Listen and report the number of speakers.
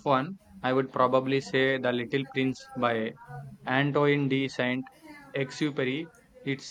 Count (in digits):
1